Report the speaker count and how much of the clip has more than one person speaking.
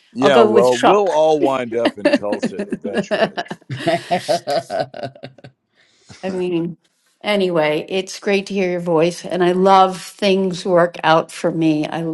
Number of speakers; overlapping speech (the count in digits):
3, about 16%